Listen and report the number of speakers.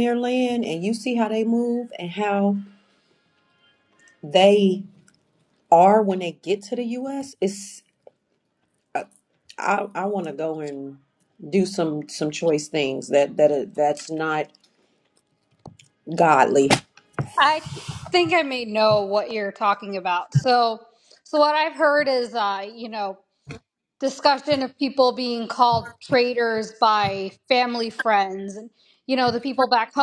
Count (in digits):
2